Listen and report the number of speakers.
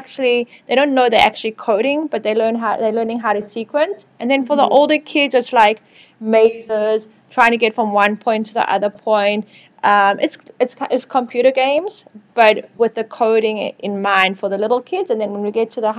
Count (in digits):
1